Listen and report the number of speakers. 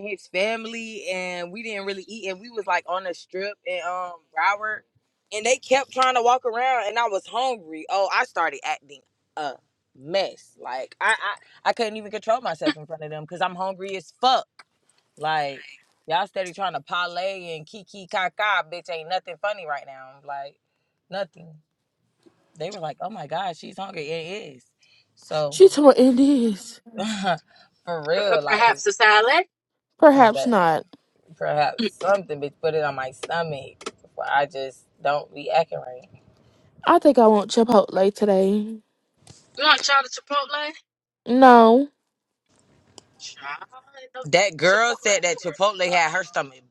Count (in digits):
3